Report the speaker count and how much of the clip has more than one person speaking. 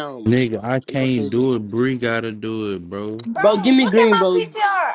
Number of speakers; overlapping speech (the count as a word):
three, about 33%